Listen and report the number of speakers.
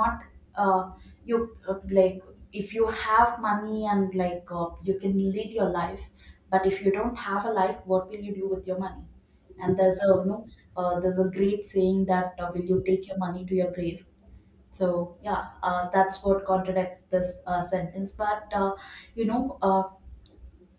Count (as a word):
one